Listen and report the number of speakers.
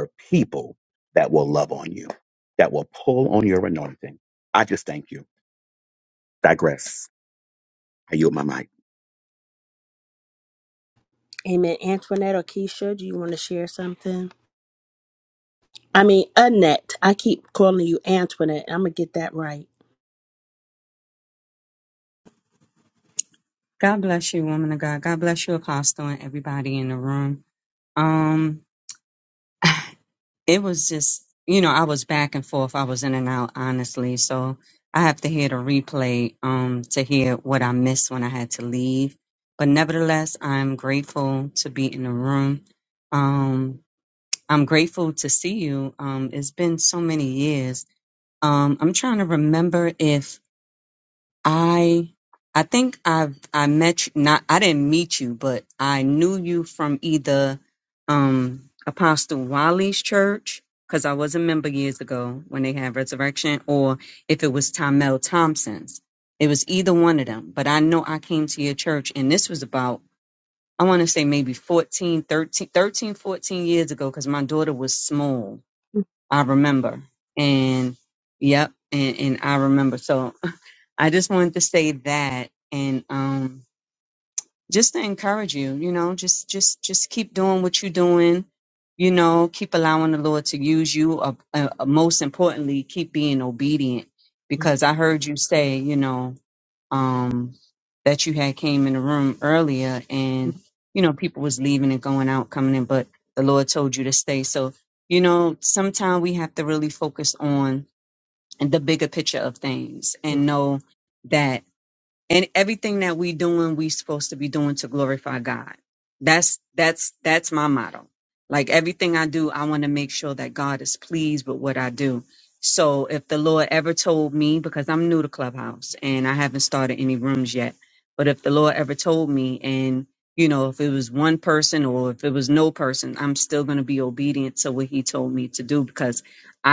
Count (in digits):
3